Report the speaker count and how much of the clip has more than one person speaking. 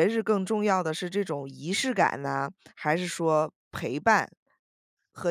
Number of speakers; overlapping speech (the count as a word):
one, no overlap